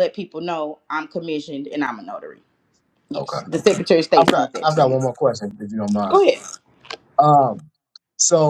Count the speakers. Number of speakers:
two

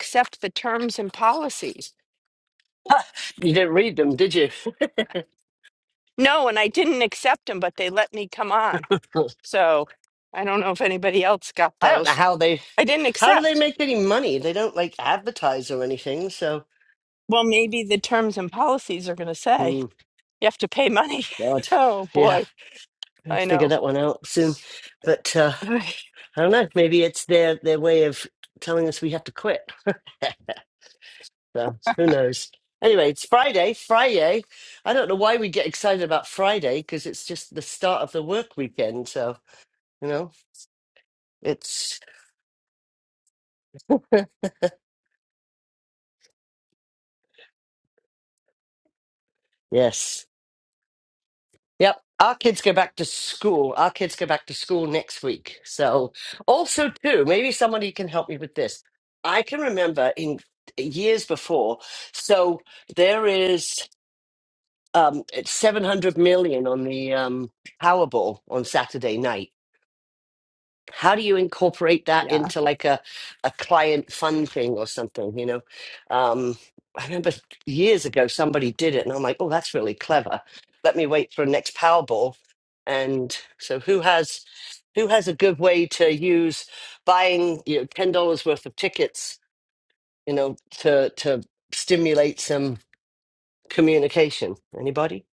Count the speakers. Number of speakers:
two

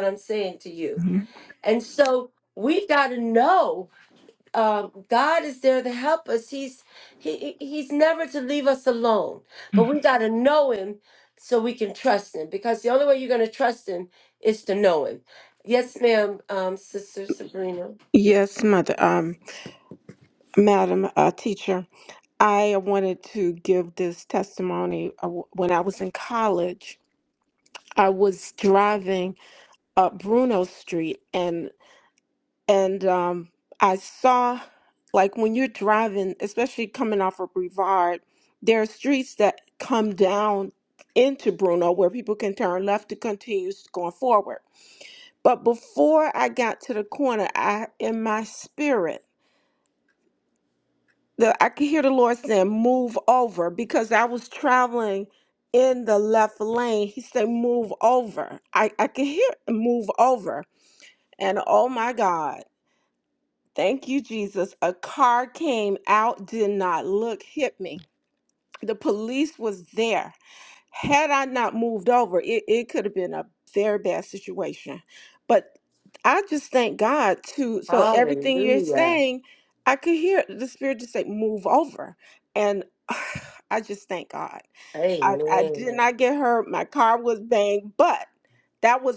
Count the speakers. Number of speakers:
two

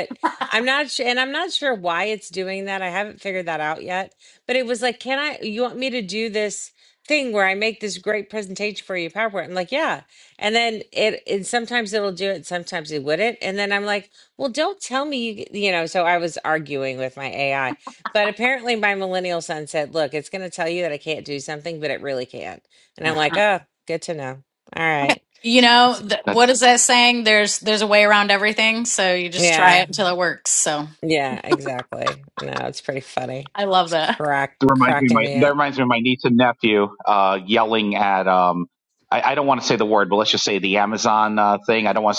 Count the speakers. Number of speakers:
three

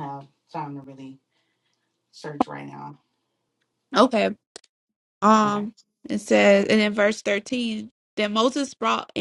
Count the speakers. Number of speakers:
two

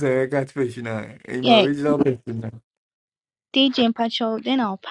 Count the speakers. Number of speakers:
two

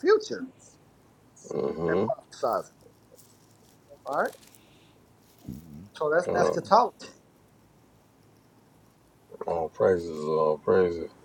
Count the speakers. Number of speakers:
two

